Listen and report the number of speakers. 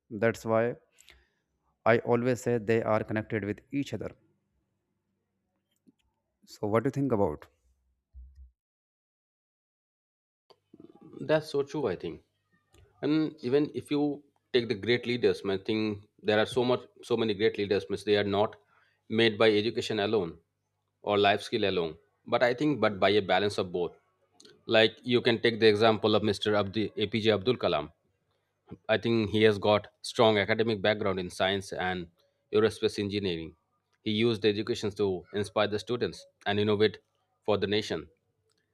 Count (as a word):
two